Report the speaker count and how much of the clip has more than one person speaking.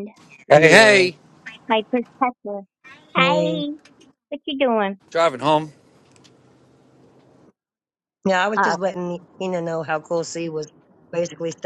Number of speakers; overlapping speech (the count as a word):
three, about 11%